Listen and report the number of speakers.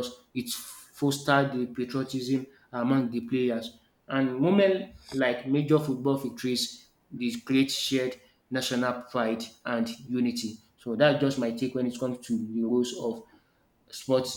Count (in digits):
1